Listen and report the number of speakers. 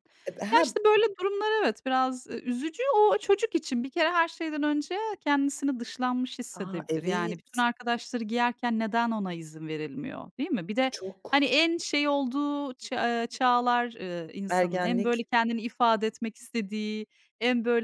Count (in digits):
2